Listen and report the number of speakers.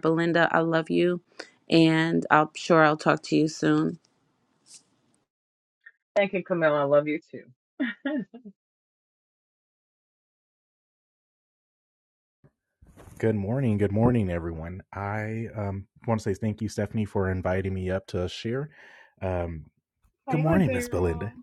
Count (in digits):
3